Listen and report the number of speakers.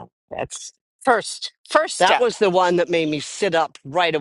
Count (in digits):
2